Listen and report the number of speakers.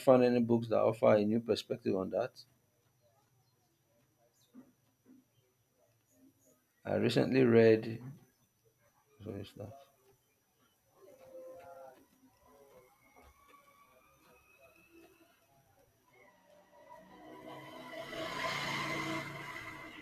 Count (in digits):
1